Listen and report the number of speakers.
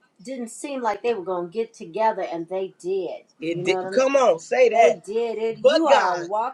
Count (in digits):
2